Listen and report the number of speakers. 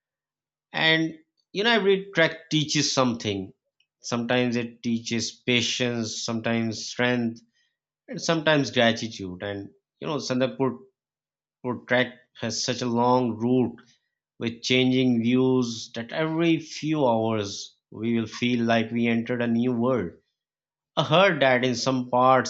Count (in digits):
1